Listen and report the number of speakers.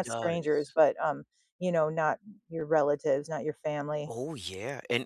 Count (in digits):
2